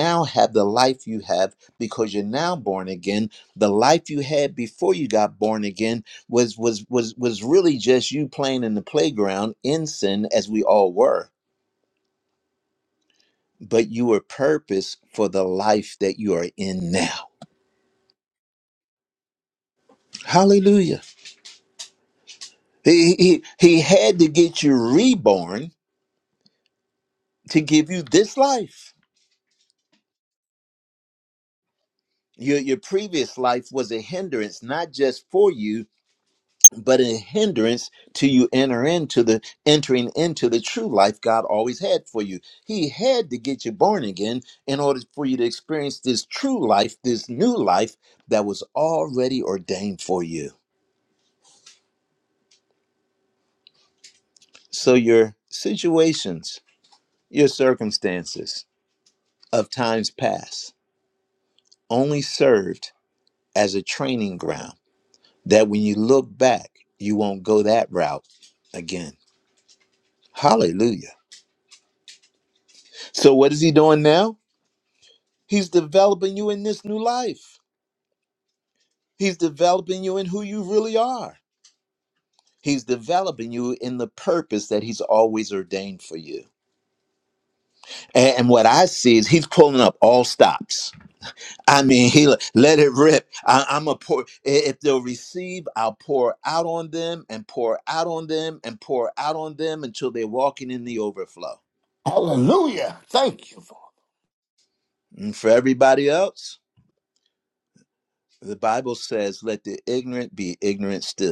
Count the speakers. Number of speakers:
2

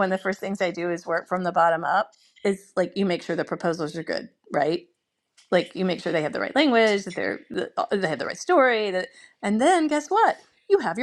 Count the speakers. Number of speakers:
1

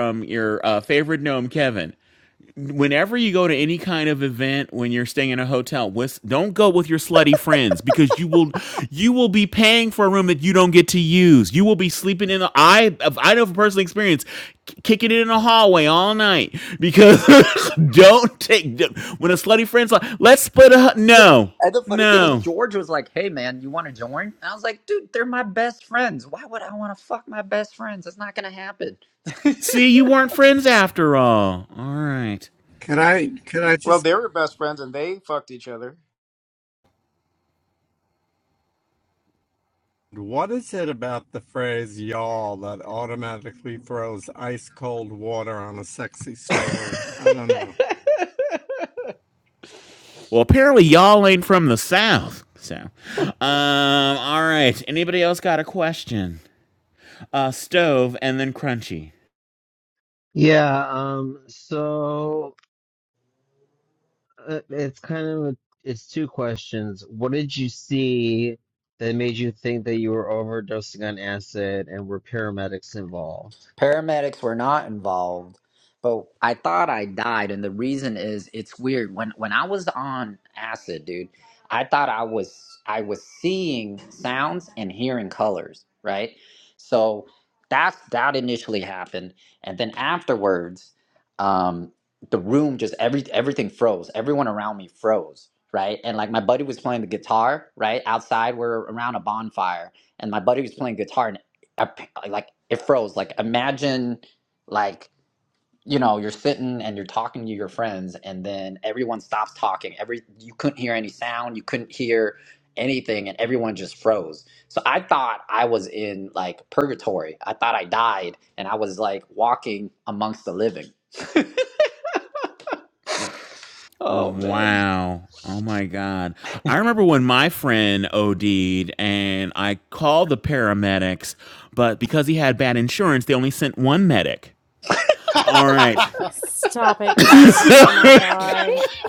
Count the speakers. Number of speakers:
6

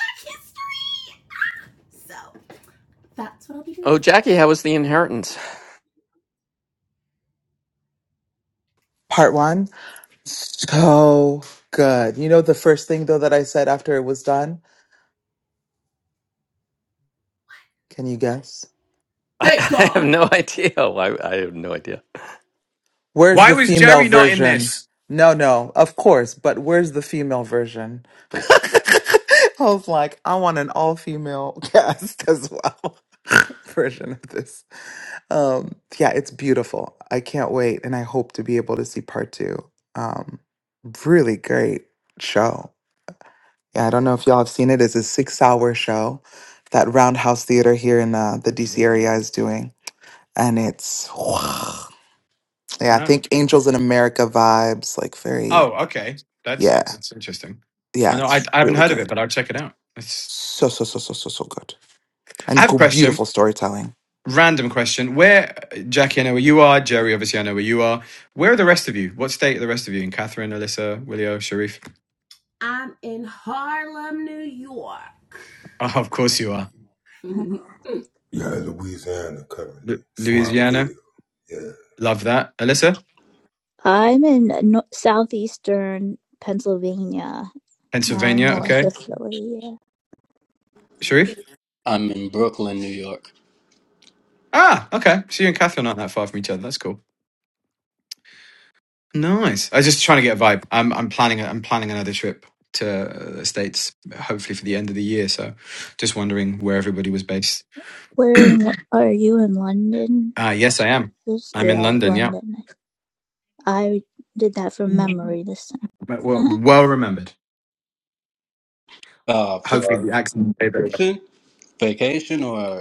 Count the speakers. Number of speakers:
7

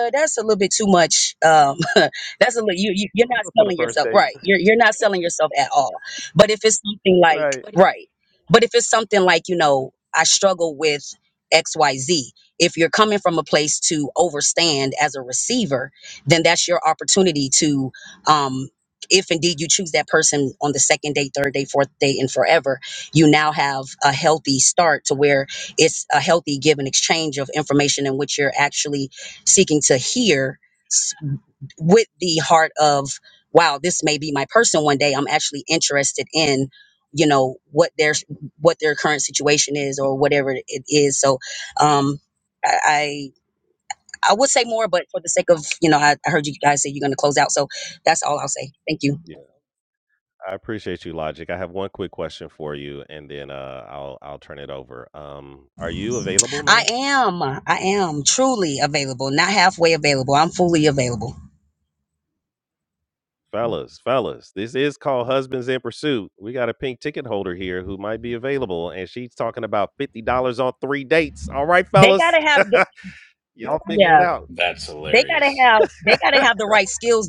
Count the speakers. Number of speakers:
3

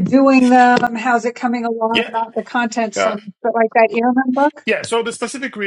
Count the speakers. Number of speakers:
2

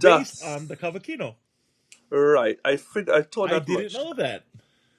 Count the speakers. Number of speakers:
2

